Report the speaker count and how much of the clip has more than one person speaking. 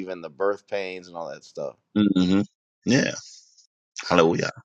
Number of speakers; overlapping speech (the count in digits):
2, no overlap